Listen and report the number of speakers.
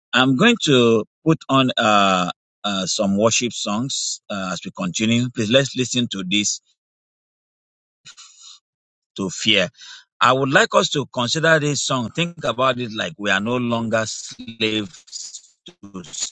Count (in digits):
1